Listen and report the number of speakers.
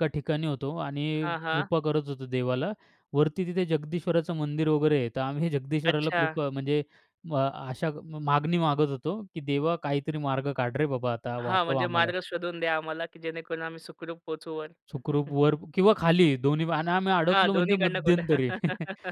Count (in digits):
2